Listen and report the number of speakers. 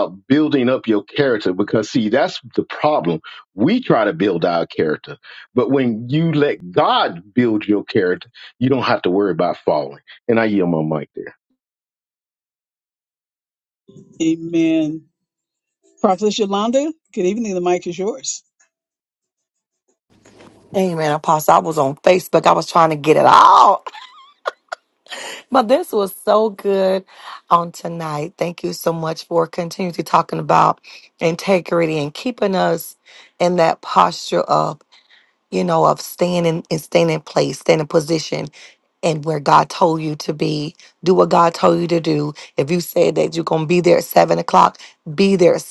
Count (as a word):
three